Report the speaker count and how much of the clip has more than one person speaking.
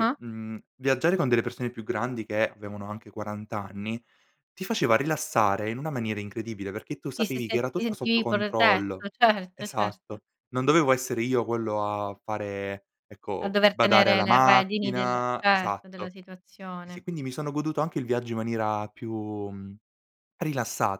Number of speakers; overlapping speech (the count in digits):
2, about 25%